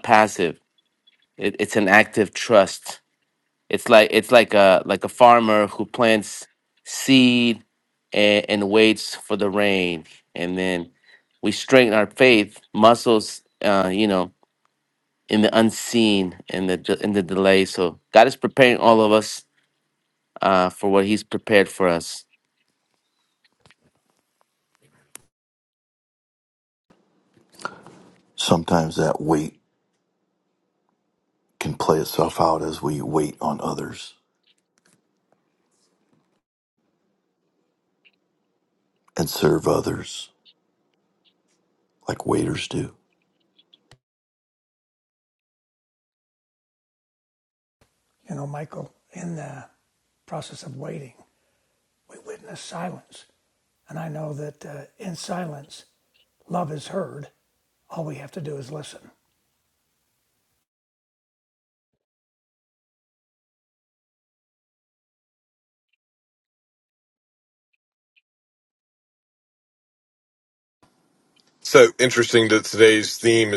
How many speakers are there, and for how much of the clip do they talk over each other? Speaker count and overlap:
4, no overlap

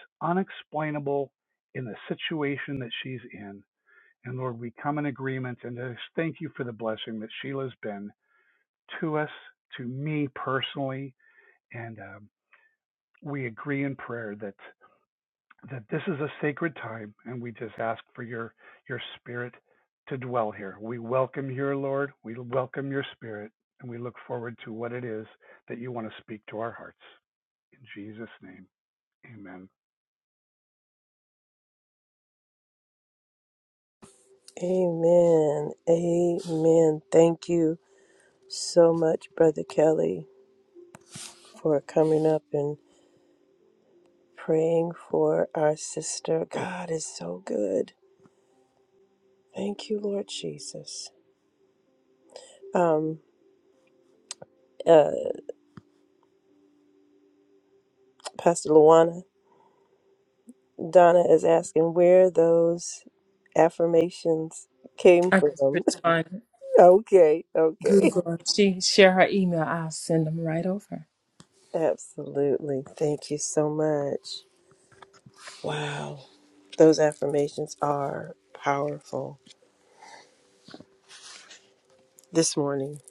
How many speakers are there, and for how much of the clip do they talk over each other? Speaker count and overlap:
3, about 1%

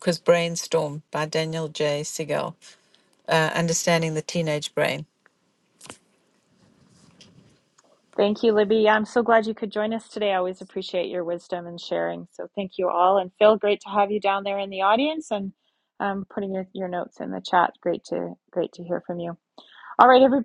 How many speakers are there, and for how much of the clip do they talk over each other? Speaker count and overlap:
2, no overlap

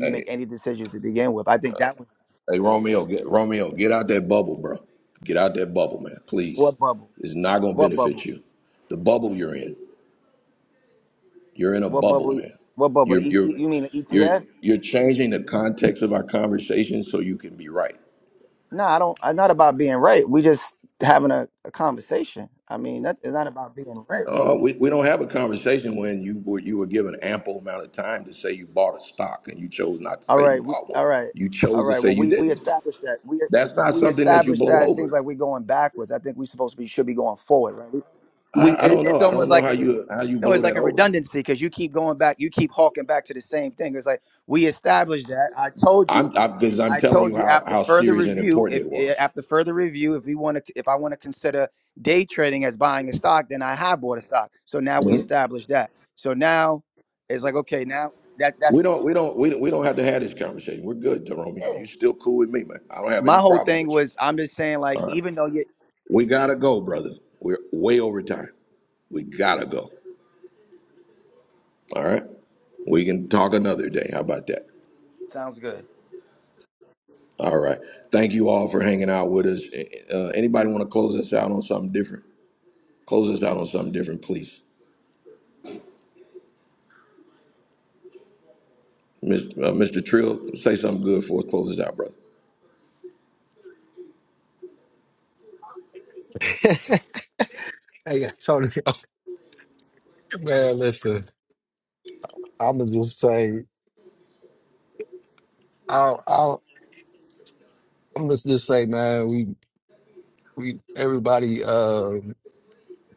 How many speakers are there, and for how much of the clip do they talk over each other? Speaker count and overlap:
3, about 10%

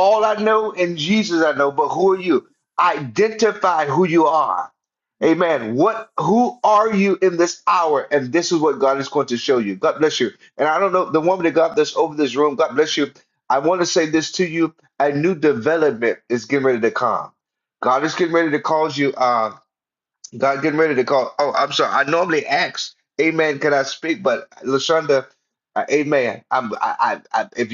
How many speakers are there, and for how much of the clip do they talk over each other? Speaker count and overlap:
1, no overlap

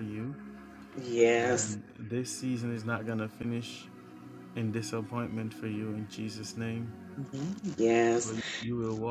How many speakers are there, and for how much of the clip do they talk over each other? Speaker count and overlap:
2, about 3%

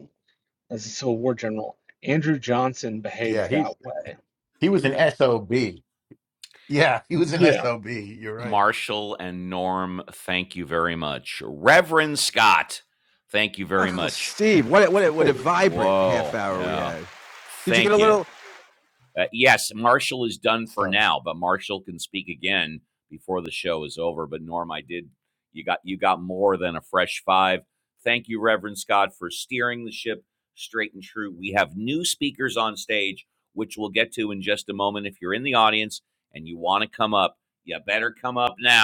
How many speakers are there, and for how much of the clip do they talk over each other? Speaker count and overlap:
4, about 10%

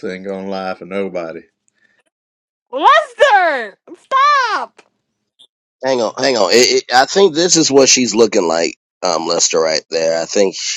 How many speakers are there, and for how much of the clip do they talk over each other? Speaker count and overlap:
3, no overlap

